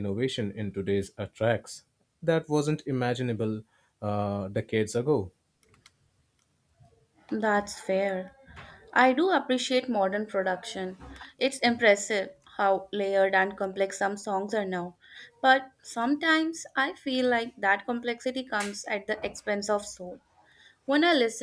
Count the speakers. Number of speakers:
two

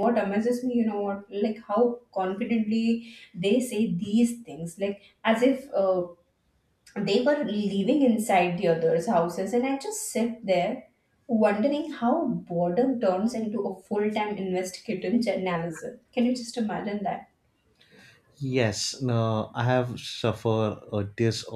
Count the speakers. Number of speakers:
two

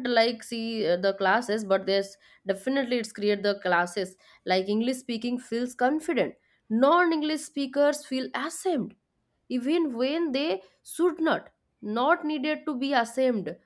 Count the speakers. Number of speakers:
one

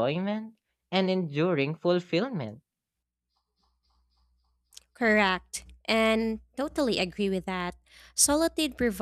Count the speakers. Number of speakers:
two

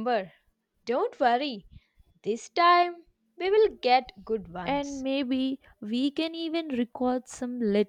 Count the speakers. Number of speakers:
two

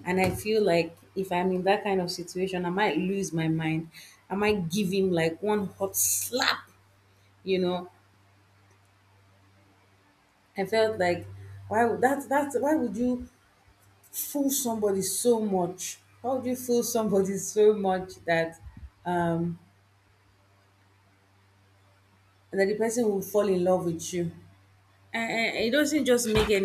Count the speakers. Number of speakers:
one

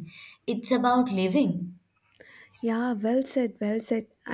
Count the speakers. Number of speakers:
two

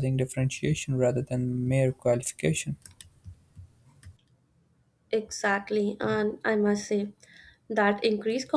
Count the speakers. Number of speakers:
two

